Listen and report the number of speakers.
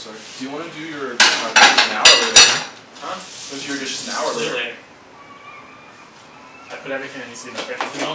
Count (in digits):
2